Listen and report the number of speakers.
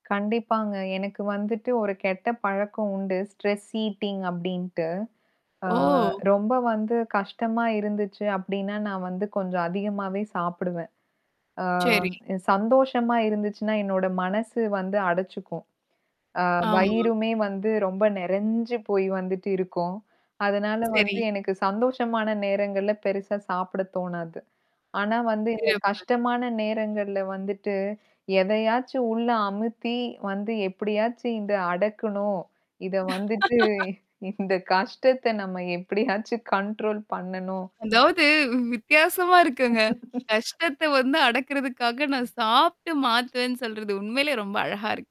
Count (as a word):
two